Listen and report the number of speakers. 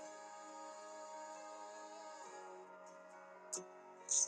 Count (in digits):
0